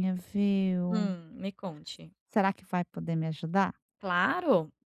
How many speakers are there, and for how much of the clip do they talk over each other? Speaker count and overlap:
two, about 4%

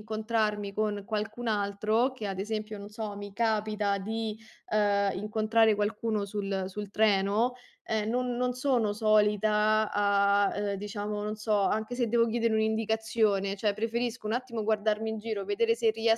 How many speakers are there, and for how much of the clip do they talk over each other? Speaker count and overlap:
one, no overlap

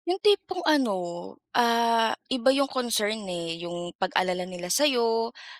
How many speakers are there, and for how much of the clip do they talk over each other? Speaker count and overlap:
one, no overlap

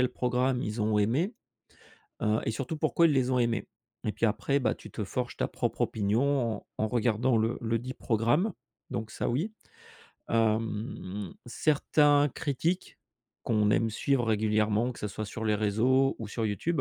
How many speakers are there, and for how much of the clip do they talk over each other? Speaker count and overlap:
one, no overlap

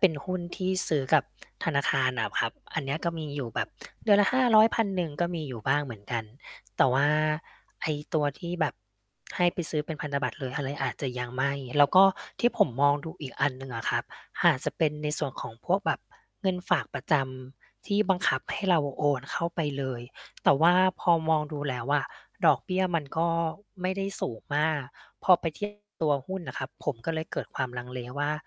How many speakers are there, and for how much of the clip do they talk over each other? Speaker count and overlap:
one, no overlap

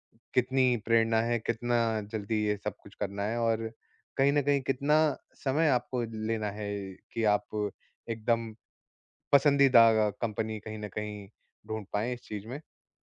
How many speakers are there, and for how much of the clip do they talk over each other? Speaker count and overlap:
one, no overlap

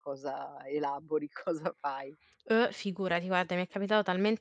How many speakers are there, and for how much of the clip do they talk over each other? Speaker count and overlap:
two, no overlap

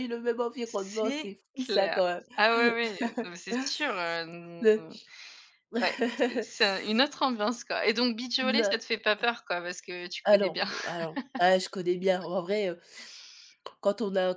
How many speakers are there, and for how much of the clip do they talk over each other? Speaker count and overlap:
two, about 17%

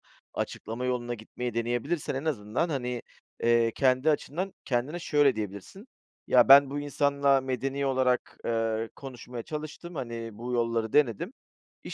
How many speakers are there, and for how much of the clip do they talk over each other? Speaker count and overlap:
one, no overlap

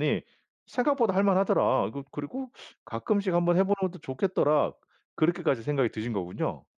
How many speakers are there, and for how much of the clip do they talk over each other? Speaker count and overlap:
one, no overlap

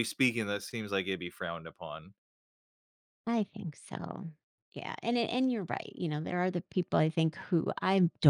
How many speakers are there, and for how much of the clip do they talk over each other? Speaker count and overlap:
two, no overlap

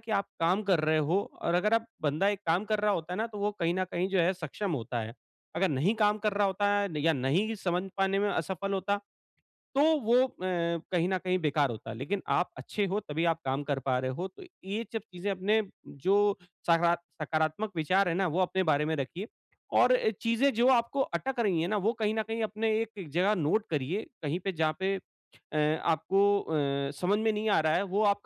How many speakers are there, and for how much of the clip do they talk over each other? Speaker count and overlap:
one, no overlap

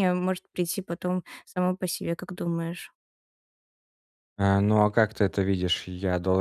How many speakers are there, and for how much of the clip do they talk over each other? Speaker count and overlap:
two, no overlap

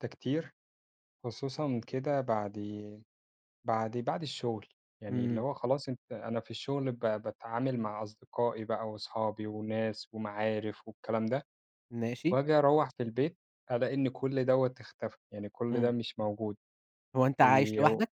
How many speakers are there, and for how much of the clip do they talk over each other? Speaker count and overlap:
two, about 4%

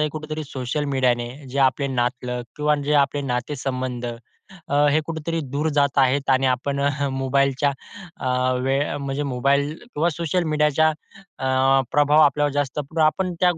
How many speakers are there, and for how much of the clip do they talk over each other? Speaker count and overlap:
one, no overlap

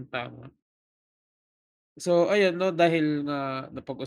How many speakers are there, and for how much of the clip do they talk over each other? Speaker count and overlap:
one, no overlap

